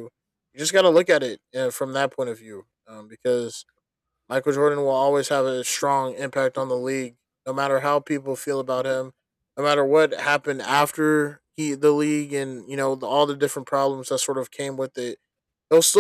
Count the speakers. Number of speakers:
1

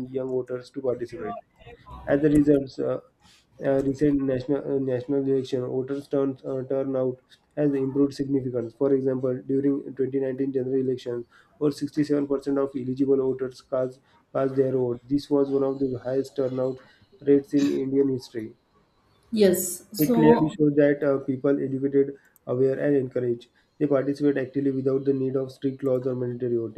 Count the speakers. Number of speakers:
2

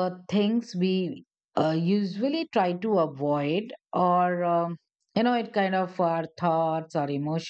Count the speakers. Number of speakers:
1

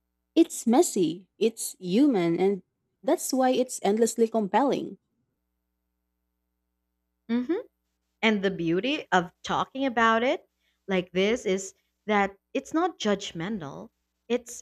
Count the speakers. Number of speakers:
2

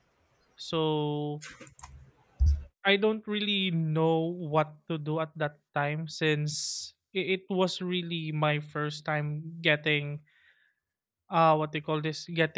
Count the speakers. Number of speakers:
1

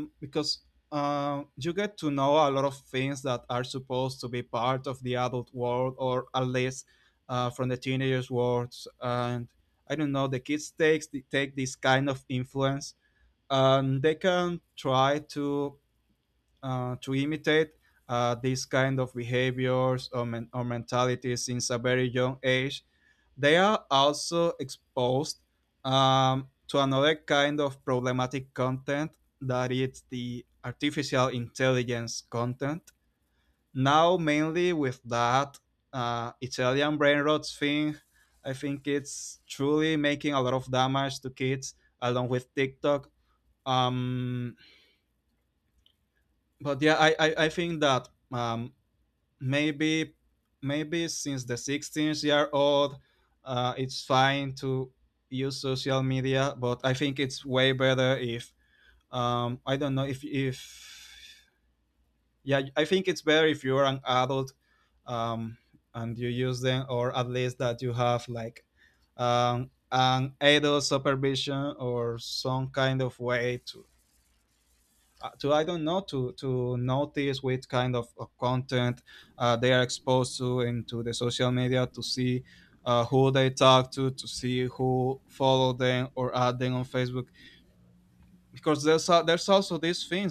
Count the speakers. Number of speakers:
1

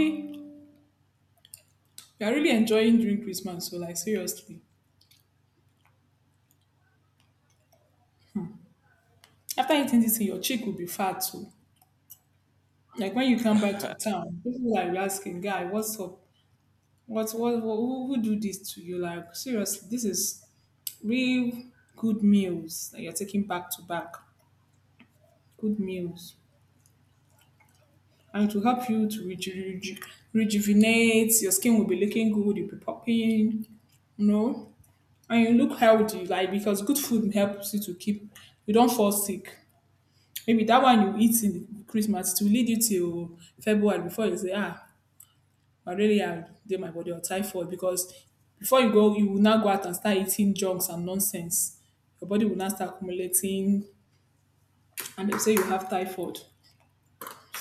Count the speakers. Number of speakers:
1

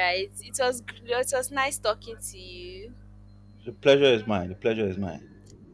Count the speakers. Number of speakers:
2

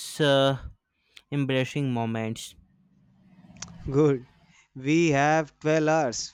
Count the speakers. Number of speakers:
2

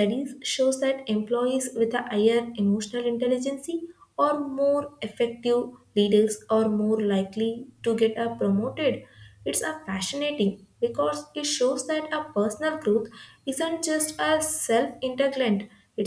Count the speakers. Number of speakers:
1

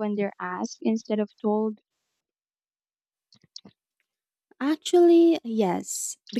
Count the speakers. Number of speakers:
2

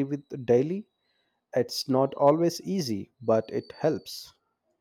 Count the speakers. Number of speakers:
1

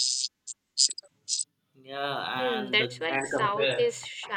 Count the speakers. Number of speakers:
2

